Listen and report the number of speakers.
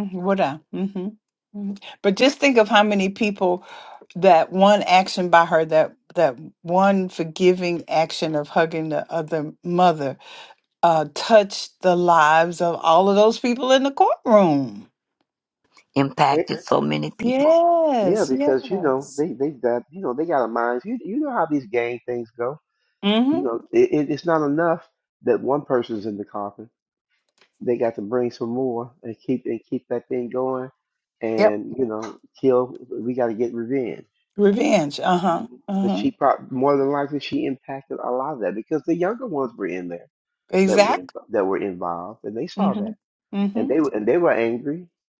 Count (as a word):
three